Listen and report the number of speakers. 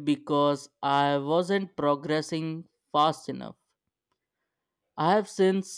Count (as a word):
one